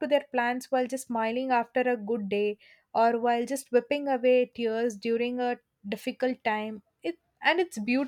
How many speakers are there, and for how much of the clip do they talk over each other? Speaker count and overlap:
1, no overlap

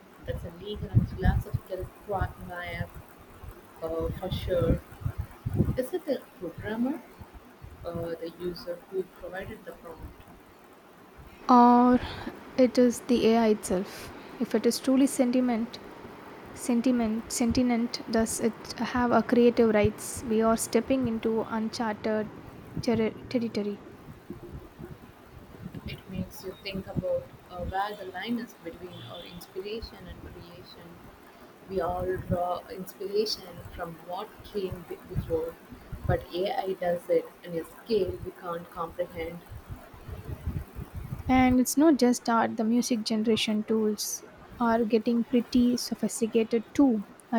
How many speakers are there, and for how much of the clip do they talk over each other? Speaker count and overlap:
2, no overlap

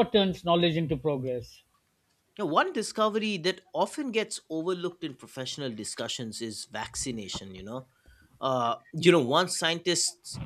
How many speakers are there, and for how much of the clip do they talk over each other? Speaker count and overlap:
2, no overlap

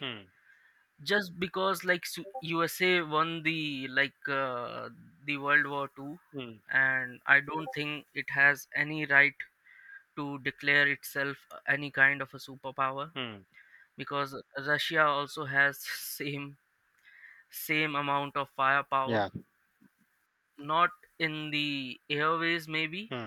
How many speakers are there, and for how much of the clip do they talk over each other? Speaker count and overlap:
2, about 1%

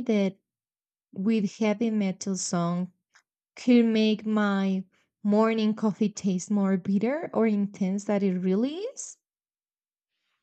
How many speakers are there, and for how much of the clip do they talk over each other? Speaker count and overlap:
1, no overlap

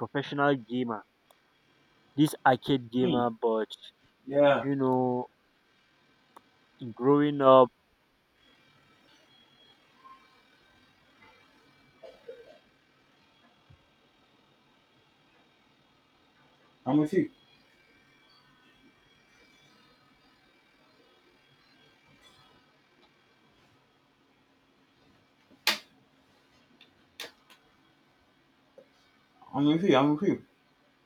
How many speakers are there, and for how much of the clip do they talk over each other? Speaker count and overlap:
2, about 1%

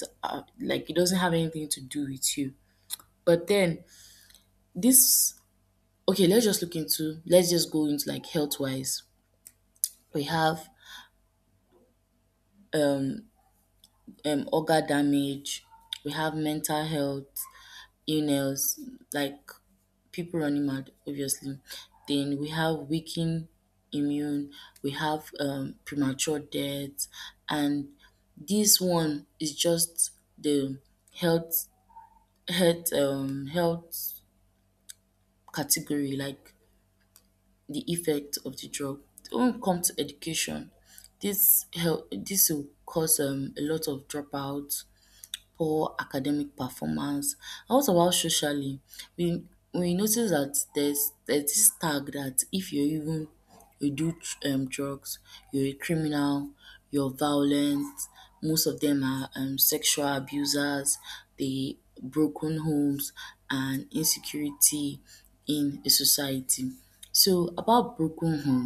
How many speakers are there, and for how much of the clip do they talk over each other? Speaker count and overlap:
1, no overlap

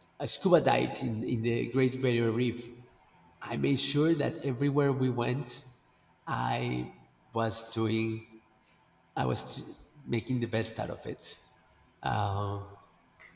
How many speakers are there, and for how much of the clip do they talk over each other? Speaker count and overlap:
1, no overlap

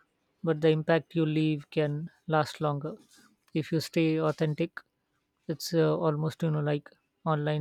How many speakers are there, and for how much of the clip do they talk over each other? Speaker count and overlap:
1, no overlap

